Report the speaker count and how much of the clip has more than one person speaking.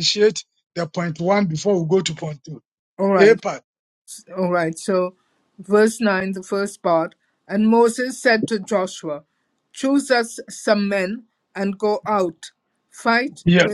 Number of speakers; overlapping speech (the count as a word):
two, about 3%